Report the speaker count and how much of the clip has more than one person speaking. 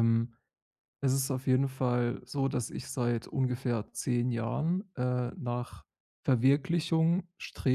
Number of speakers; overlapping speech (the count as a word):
one, no overlap